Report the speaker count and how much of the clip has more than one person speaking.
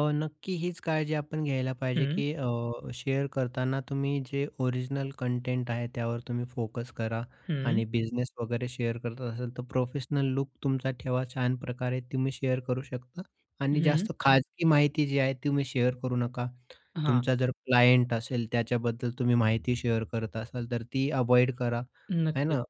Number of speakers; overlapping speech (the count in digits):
2, about 6%